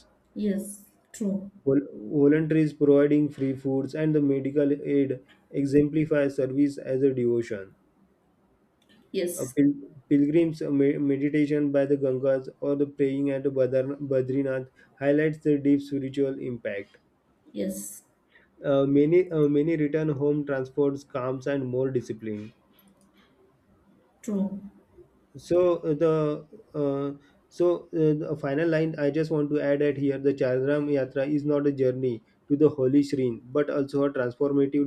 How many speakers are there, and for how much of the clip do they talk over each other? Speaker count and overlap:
2, under 1%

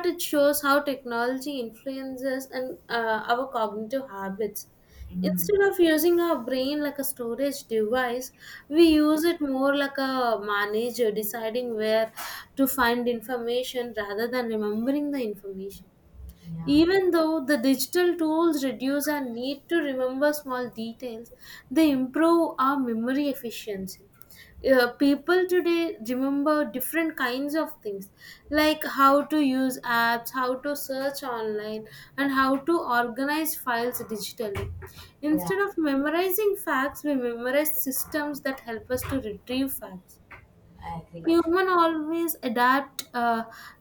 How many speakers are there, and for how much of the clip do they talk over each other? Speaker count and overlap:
2, about 2%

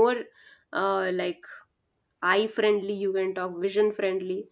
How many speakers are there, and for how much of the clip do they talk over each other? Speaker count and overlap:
1, no overlap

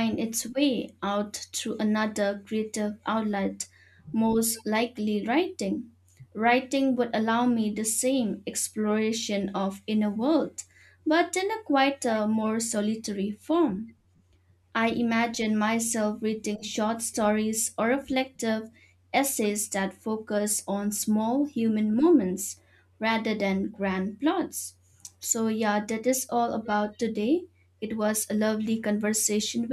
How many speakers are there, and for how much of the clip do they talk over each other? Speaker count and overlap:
1, no overlap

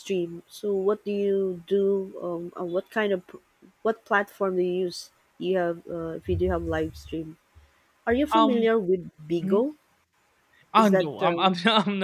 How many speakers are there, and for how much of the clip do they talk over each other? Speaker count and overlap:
2, about 11%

